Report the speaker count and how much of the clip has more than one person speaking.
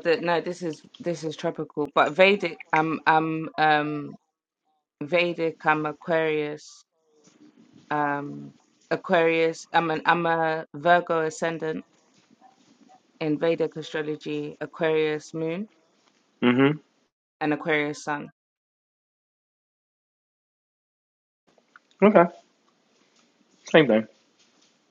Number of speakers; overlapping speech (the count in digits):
2, no overlap